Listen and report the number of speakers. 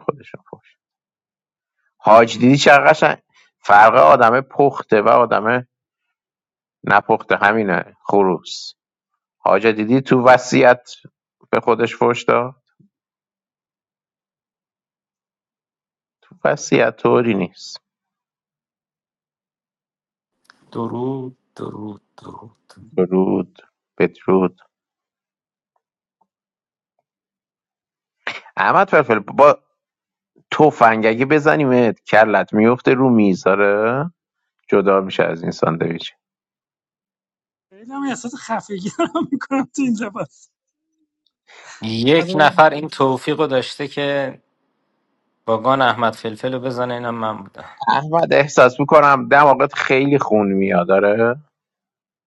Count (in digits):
3